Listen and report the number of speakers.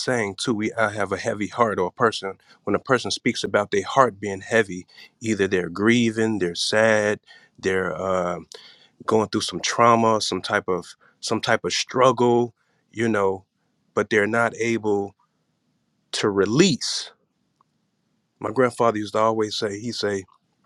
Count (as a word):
one